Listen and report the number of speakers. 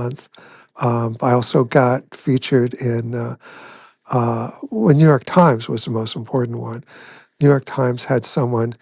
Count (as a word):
one